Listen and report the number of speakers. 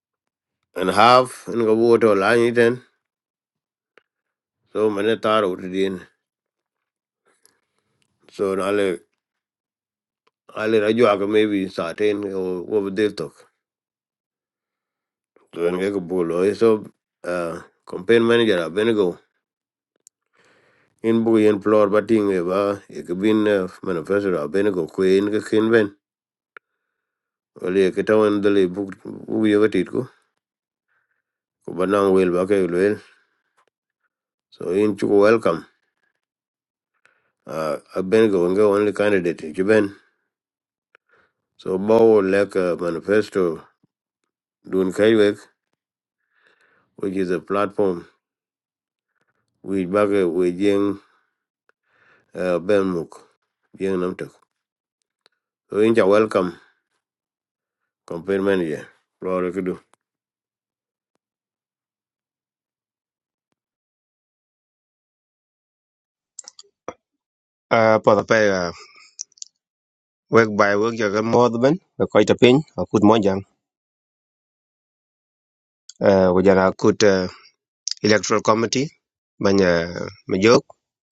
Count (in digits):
2